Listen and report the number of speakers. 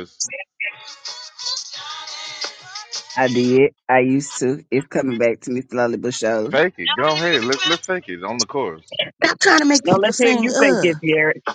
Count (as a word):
four